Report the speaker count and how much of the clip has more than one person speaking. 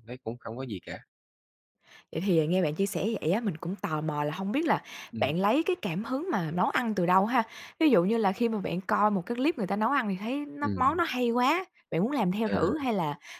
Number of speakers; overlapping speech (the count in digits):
2, about 4%